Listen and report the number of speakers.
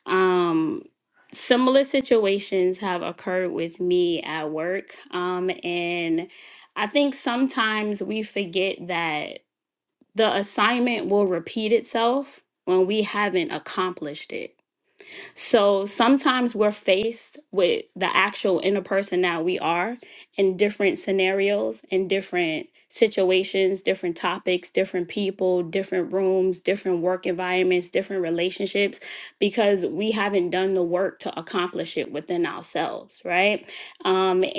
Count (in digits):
1